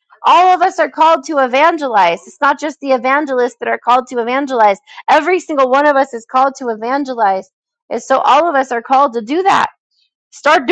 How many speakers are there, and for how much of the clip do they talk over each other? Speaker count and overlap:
one, no overlap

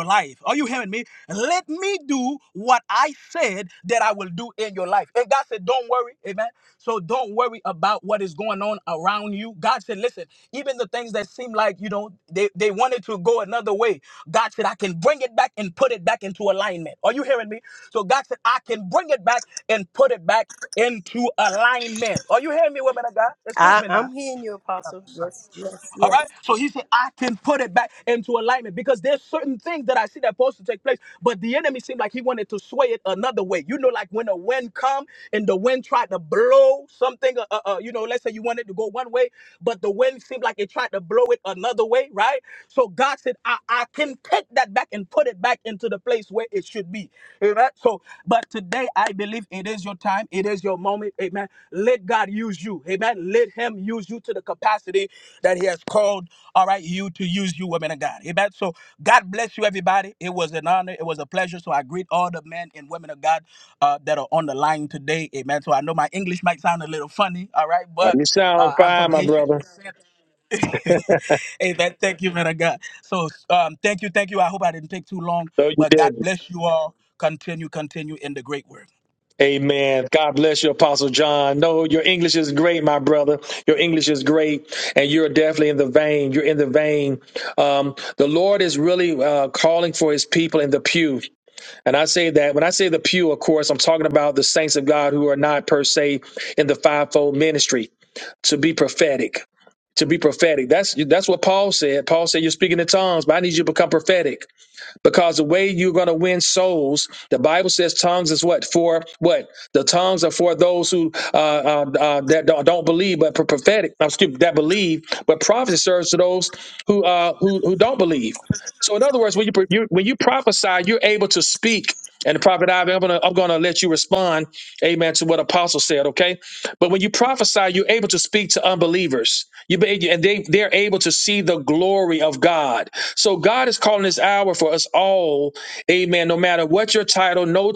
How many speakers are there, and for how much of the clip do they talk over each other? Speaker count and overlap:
three, about 2%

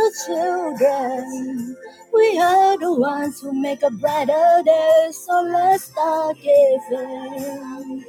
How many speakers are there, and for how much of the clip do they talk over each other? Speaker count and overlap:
one, no overlap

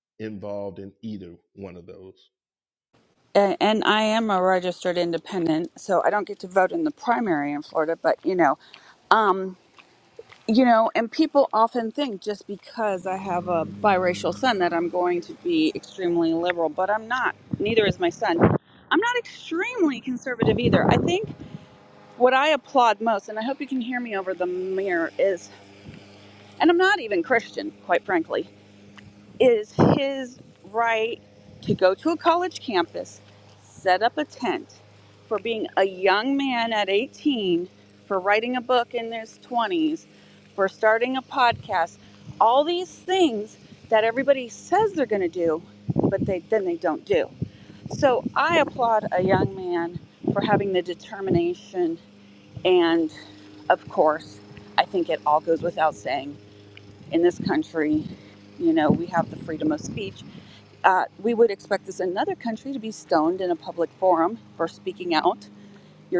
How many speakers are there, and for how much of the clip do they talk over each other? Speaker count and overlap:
two, no overlap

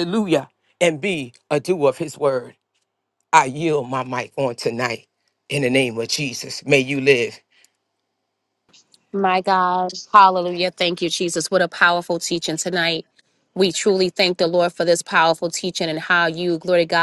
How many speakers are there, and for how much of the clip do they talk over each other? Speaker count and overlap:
two, no overlap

